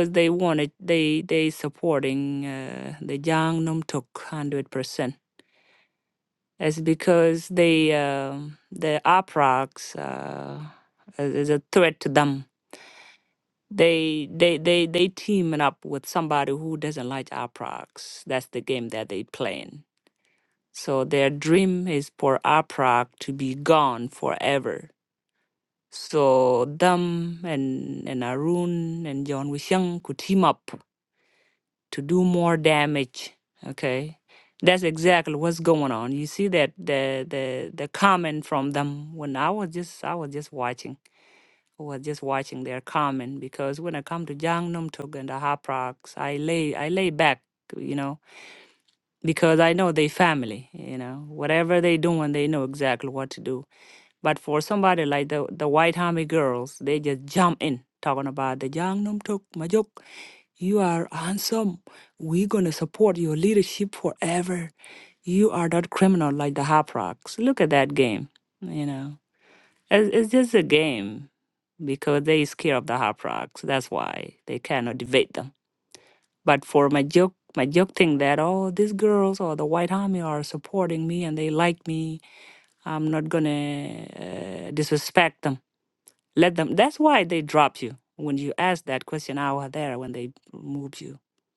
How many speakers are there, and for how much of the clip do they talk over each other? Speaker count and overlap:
1, no overlap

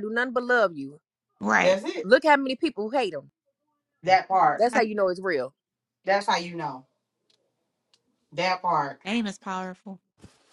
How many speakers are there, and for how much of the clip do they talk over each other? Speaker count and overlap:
3, about 5%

